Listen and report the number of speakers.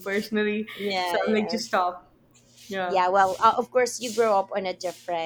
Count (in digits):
2